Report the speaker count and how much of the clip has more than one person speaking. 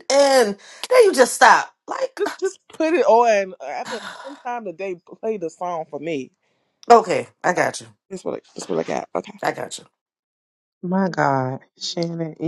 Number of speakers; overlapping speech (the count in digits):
3, about 1%